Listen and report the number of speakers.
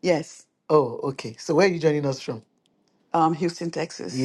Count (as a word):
two